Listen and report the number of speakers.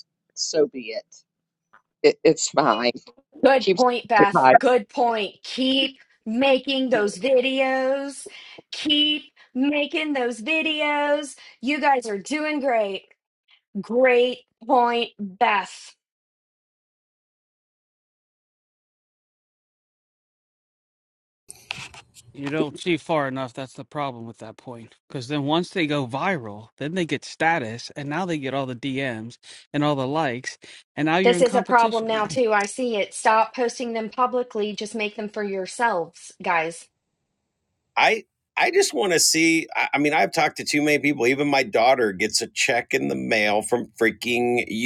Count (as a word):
four